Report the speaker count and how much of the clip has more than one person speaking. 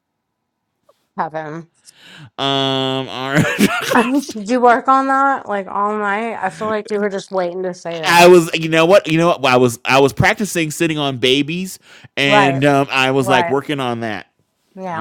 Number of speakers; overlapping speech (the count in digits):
2, about 7%